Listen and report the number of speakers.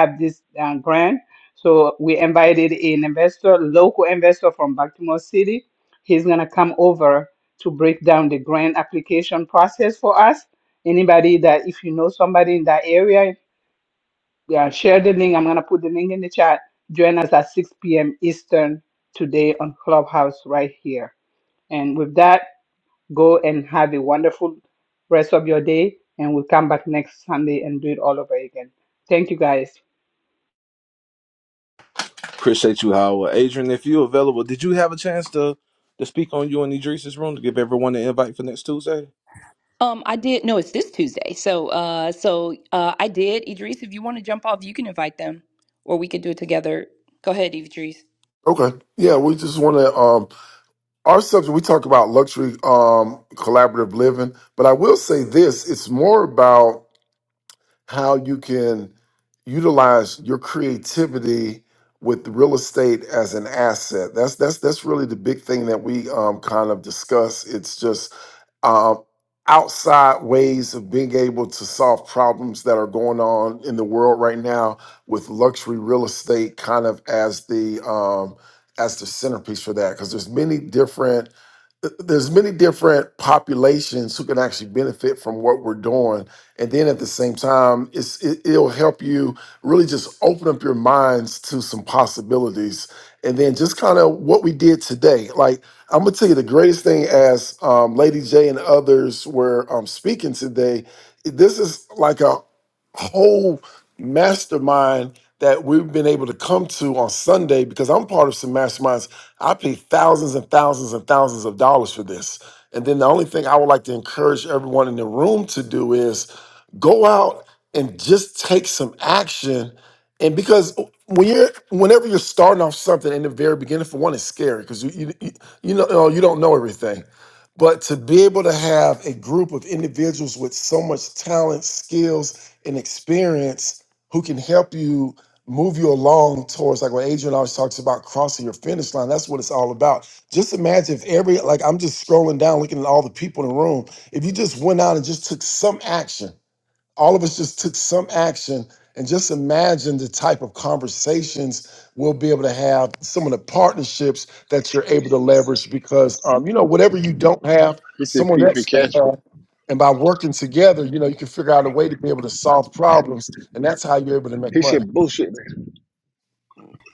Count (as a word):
five